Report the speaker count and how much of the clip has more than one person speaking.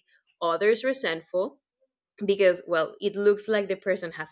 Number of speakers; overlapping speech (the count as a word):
one, no overlap